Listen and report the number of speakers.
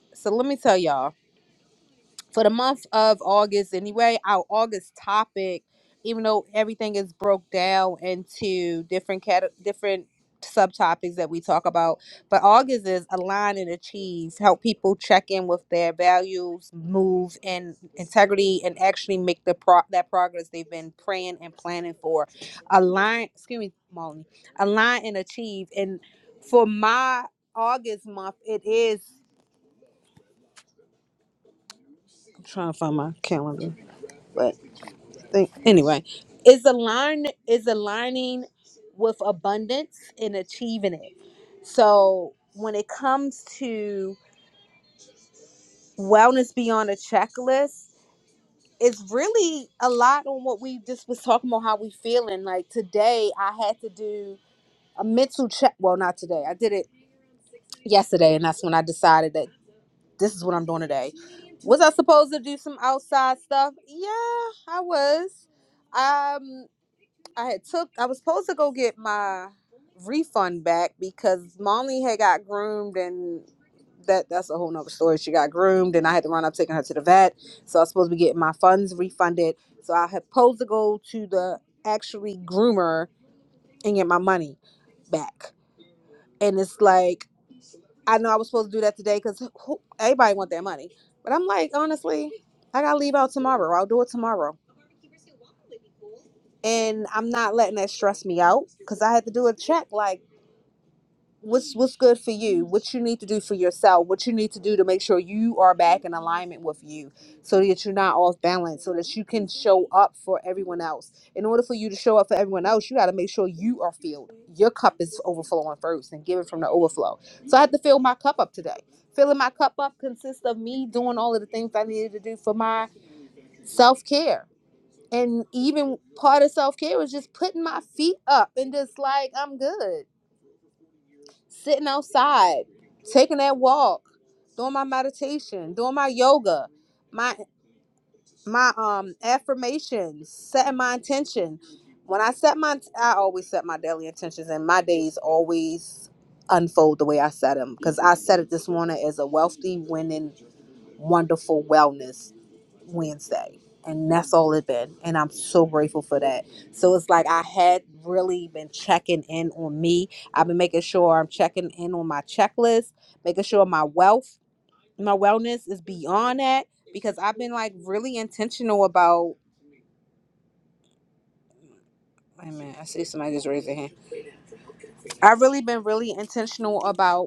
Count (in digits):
1